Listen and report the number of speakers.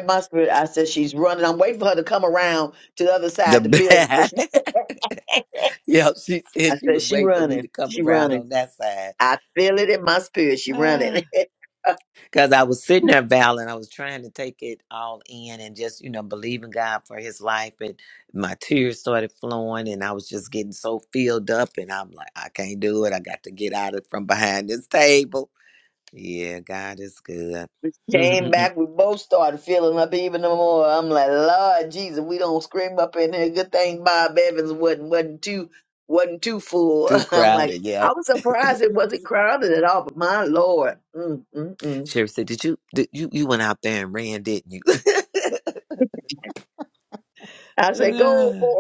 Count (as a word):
two